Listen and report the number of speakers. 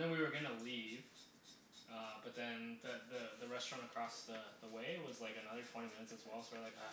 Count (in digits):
1